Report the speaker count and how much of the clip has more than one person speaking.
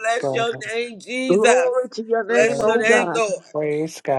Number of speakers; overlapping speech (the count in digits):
3, about 42%